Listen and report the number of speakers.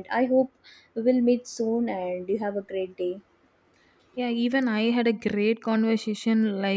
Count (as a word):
two